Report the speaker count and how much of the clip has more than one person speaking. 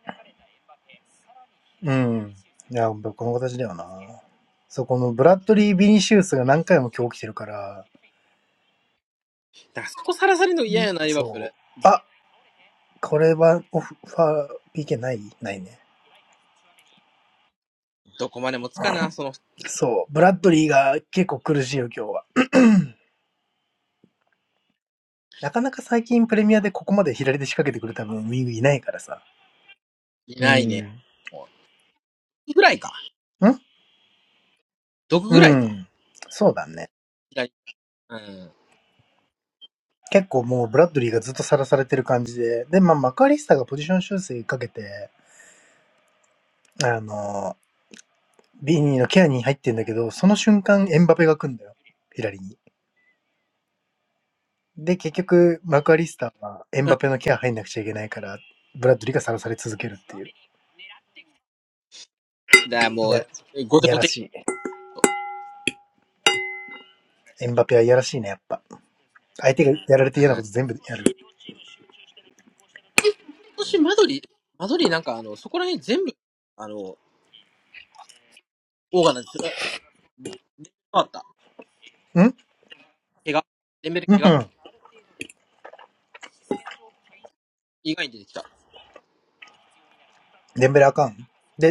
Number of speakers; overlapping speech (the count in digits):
2, about 3%